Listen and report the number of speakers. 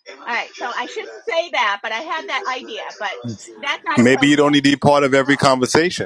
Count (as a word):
two